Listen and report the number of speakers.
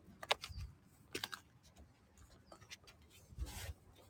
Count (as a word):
zero